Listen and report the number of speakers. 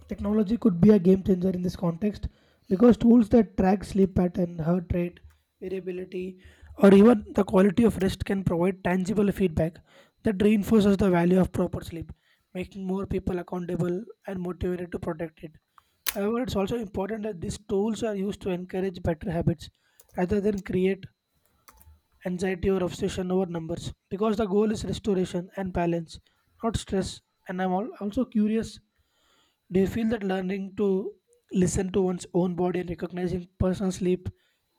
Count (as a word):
one